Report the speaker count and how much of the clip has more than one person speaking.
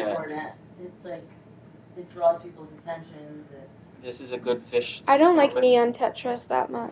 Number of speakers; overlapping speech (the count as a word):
three, about 11%